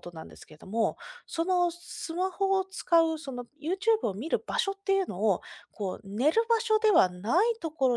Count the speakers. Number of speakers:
one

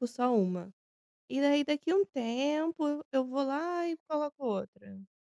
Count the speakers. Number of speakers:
one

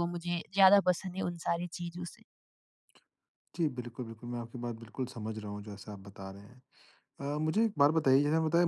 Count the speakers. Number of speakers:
two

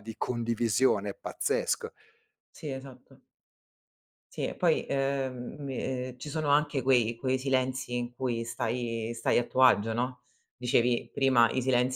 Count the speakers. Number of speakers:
two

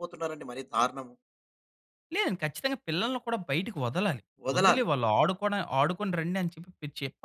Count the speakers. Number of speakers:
two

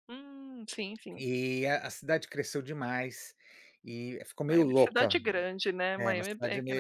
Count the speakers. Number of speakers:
two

